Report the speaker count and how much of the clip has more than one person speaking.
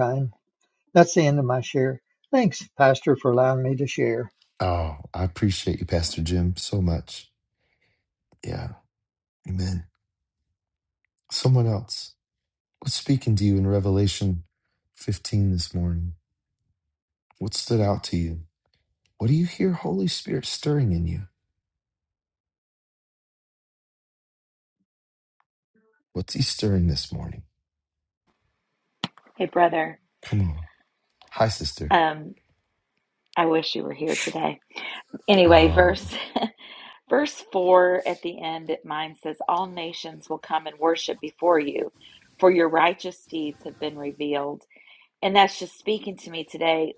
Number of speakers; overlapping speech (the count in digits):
3, about 1%